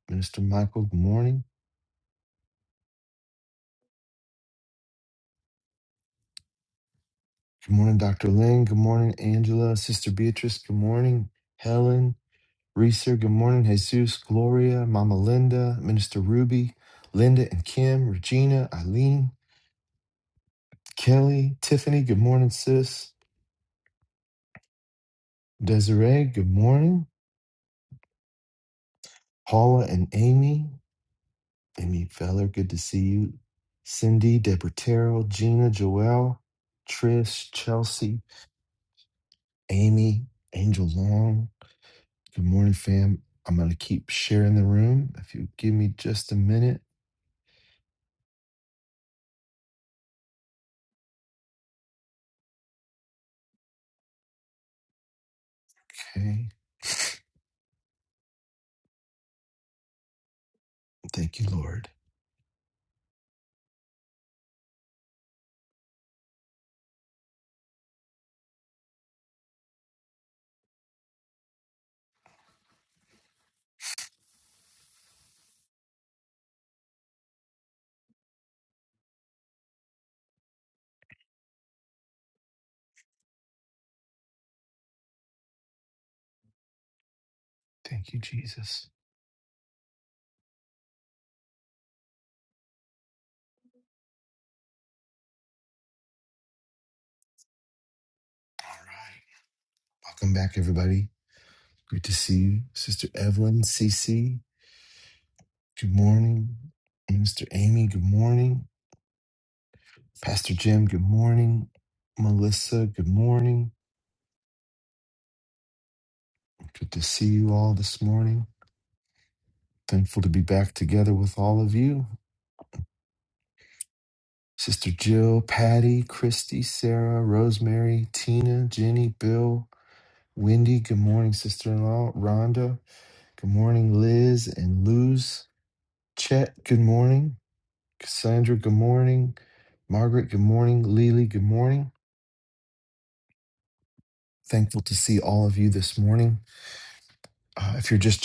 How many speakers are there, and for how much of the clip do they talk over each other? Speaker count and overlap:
1, no overlap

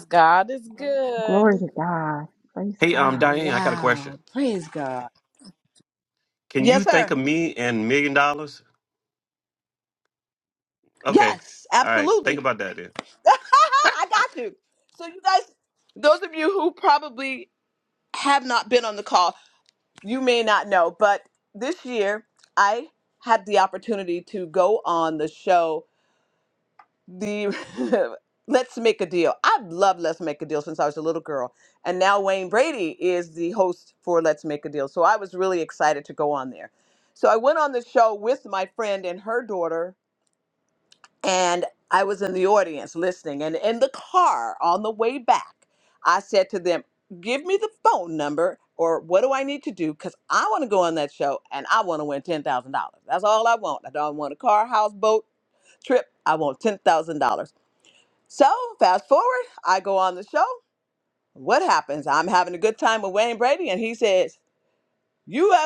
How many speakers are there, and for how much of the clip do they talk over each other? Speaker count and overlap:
4, about 5%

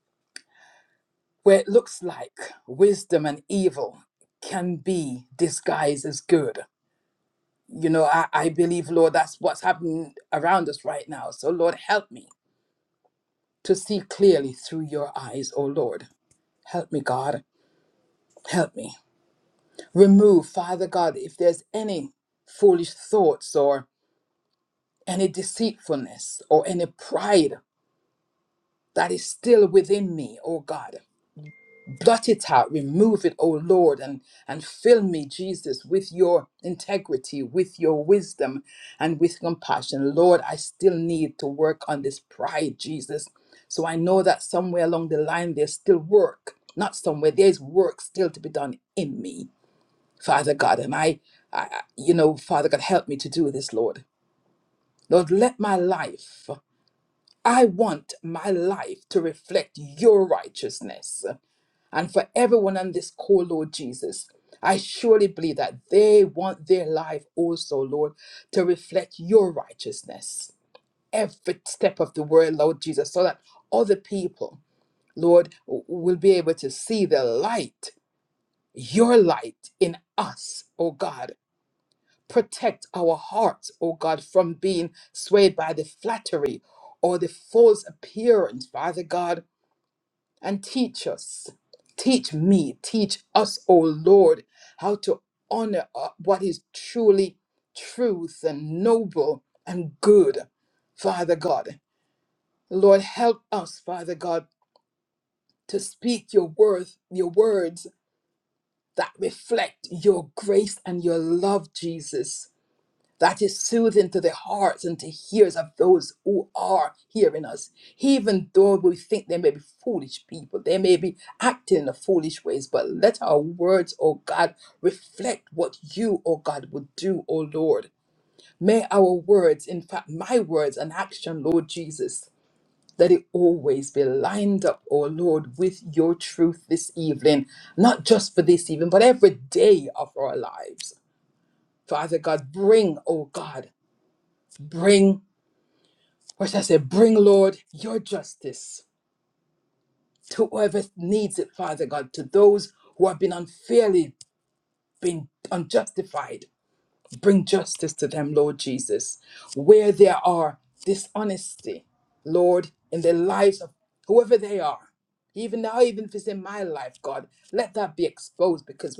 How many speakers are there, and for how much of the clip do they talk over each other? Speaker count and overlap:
1, no overlap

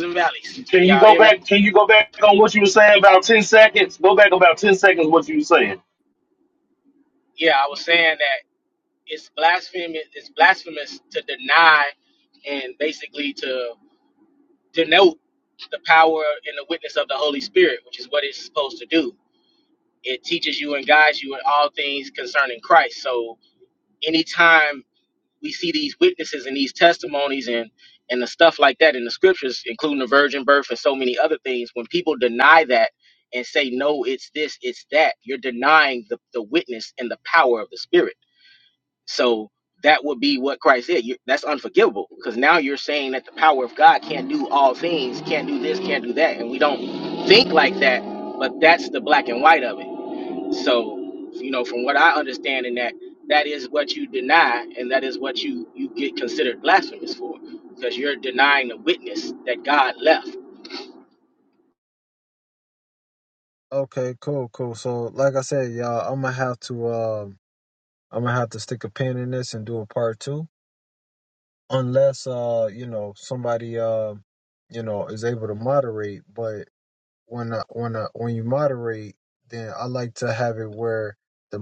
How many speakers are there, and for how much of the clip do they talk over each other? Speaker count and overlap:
3, about 1%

